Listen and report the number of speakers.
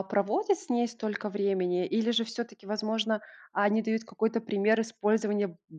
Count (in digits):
1